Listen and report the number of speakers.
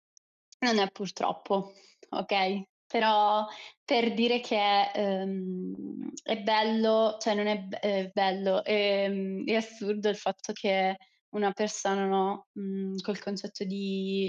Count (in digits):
1